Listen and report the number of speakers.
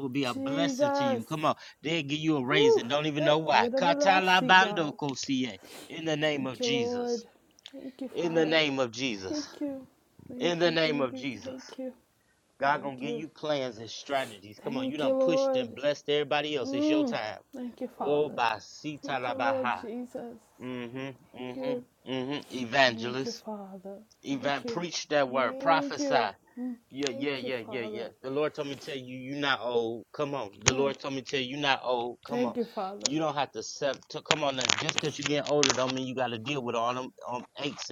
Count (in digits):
2